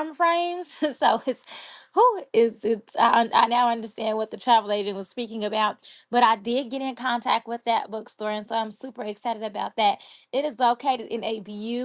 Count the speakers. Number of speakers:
one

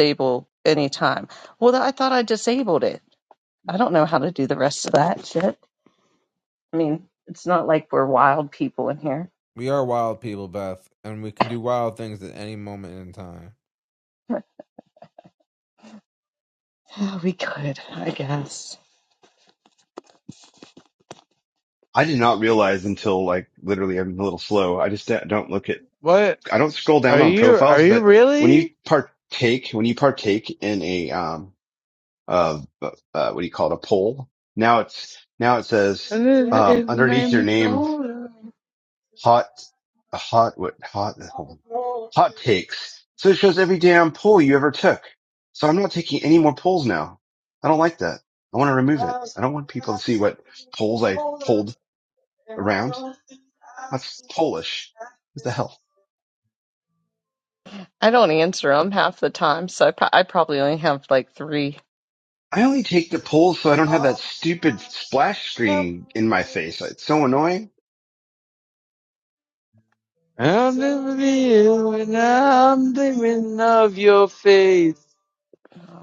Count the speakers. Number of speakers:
four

